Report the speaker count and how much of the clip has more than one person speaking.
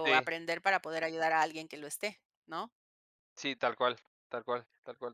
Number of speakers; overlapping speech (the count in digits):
2, about 4%